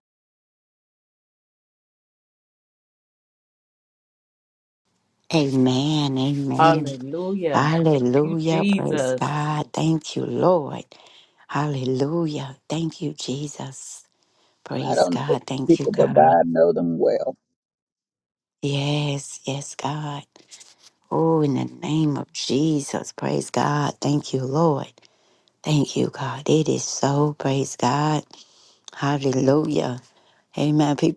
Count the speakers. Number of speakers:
three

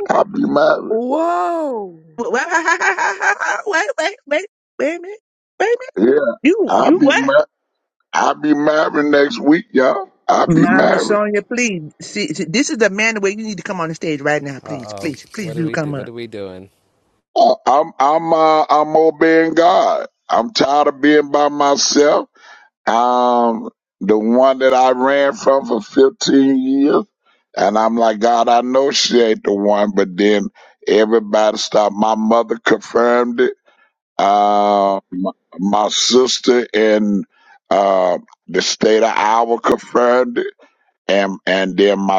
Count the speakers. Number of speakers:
four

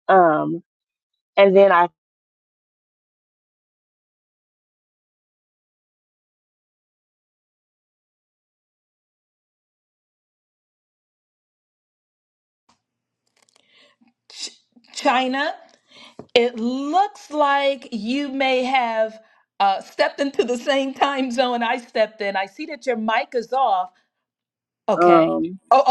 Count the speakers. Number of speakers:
two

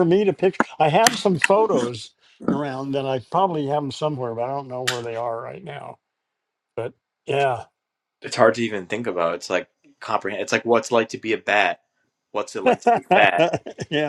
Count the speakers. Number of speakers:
two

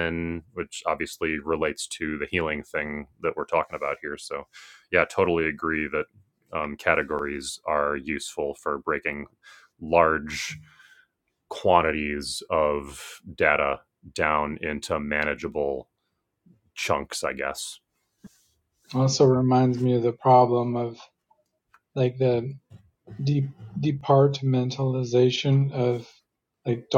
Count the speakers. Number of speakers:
two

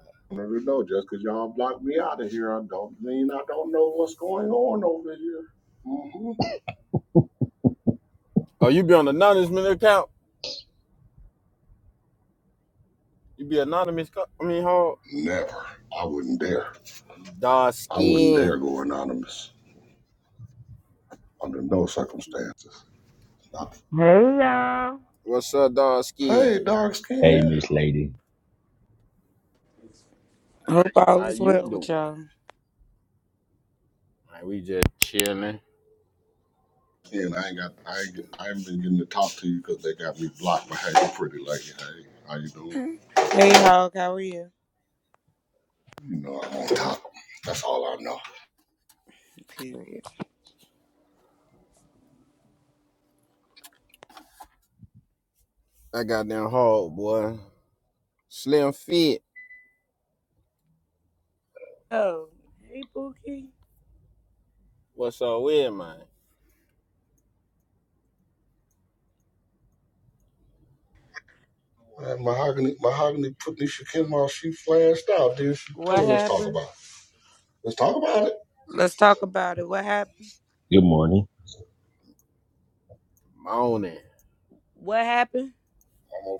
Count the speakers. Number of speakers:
four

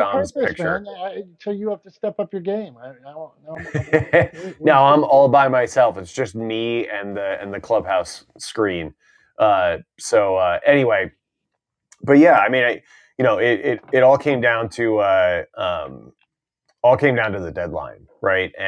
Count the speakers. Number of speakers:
two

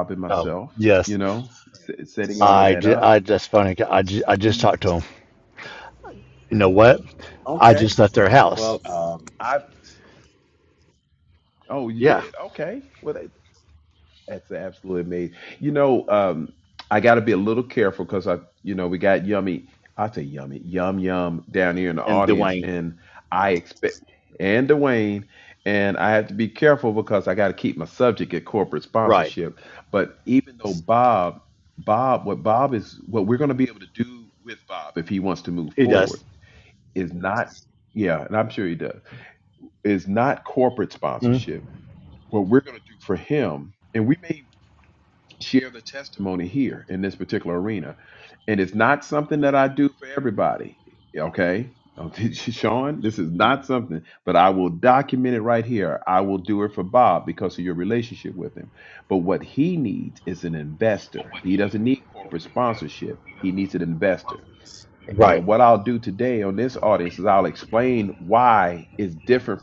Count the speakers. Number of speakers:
two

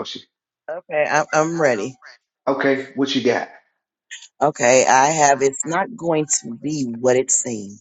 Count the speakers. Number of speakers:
two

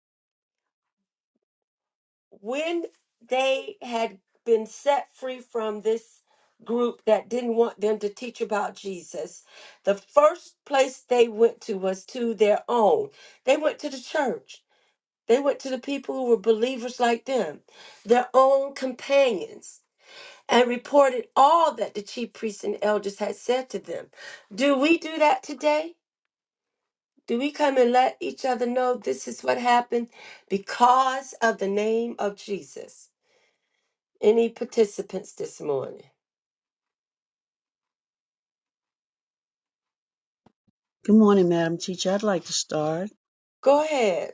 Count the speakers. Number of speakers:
two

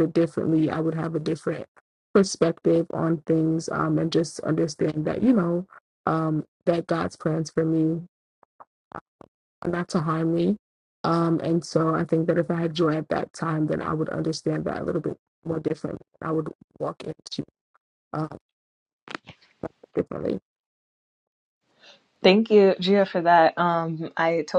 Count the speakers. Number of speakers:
two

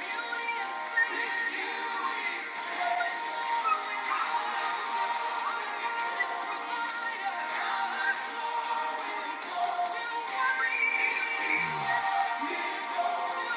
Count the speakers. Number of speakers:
zero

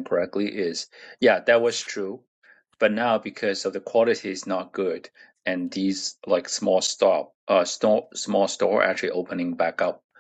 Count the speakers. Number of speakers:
one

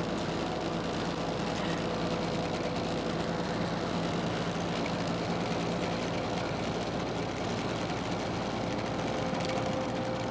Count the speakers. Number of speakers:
zero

